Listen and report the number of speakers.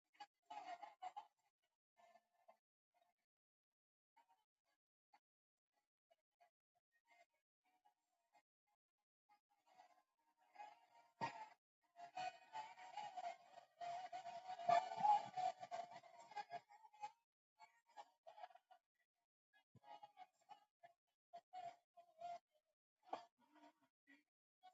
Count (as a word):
zero